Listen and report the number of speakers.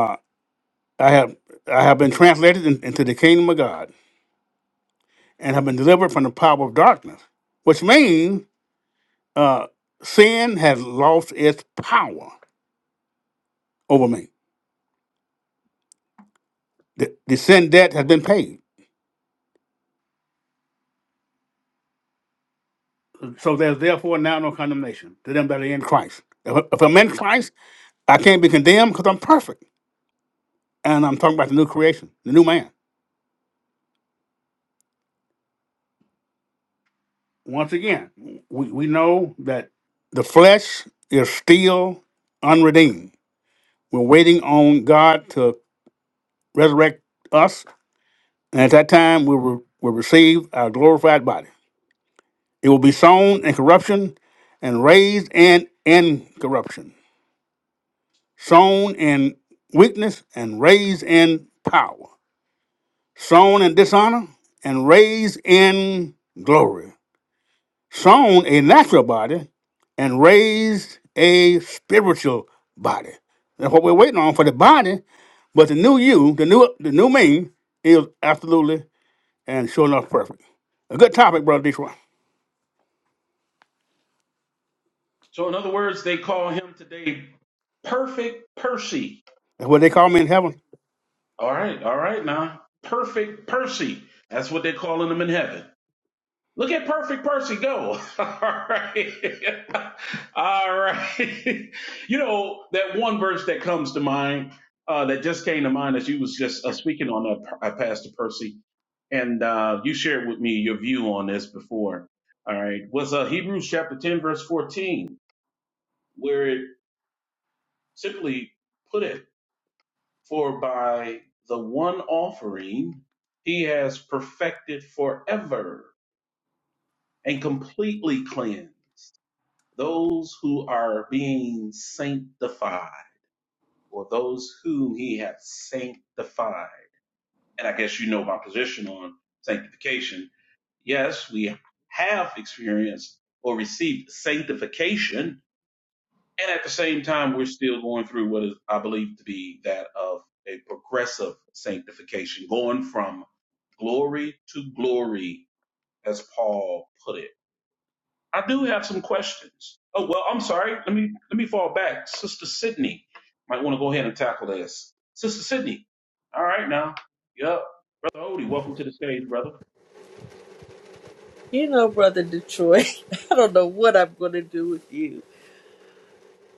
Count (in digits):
3